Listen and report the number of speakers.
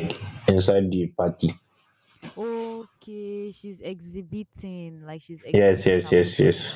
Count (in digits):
2